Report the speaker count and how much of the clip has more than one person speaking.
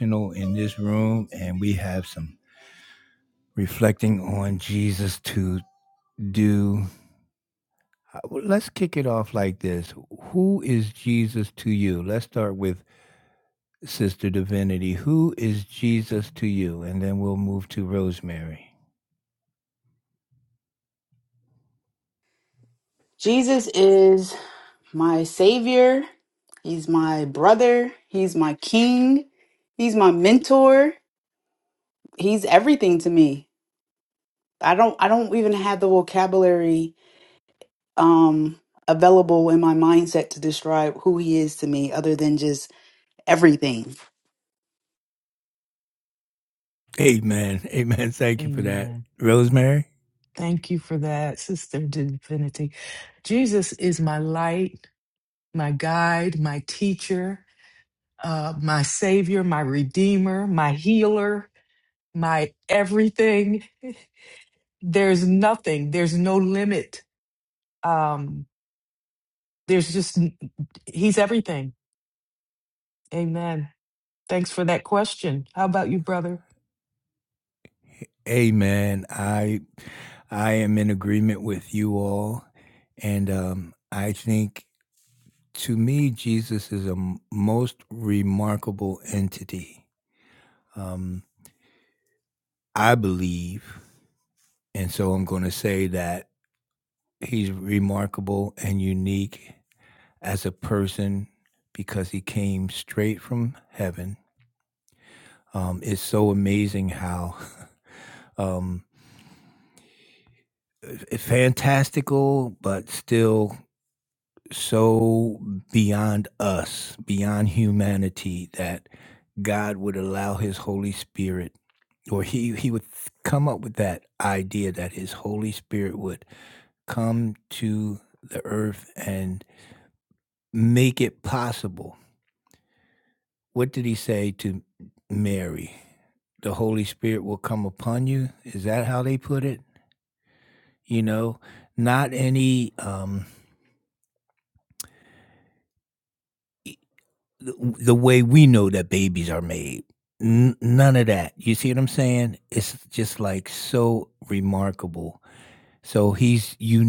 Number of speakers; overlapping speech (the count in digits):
3, under 1%